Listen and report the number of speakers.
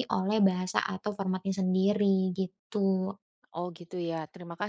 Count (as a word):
two